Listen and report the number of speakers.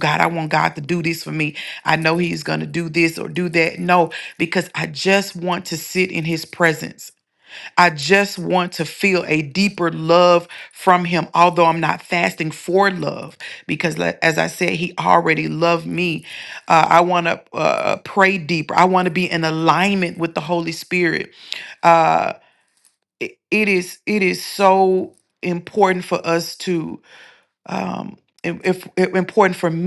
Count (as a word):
one